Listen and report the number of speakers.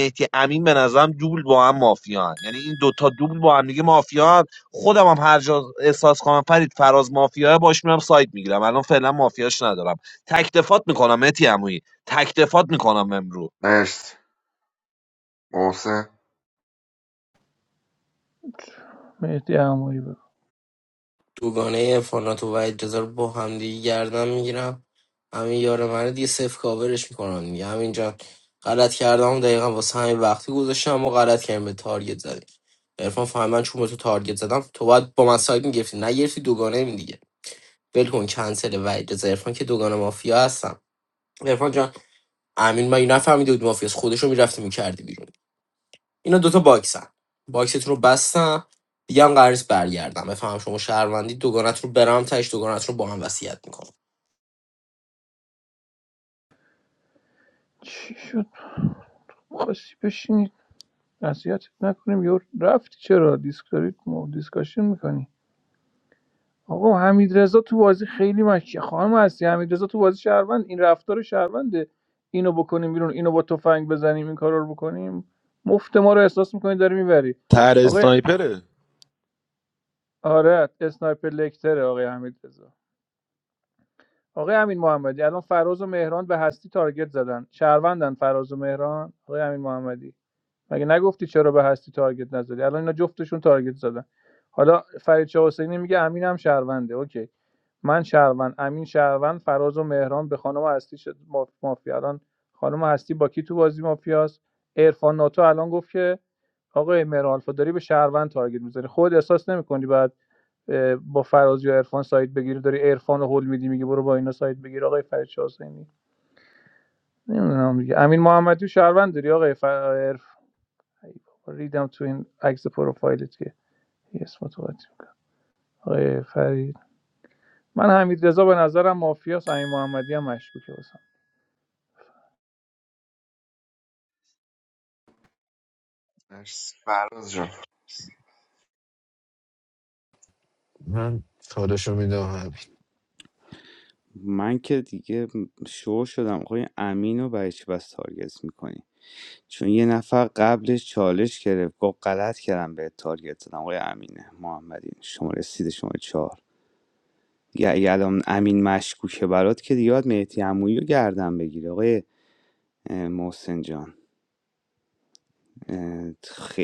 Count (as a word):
six